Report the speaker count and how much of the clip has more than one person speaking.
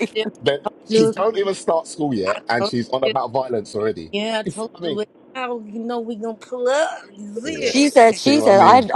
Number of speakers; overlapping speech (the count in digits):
3, about 24%